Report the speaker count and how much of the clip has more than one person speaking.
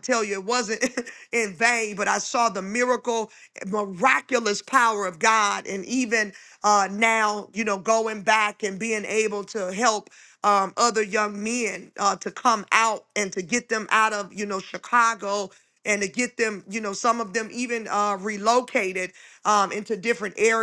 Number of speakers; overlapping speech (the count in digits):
1, no overlap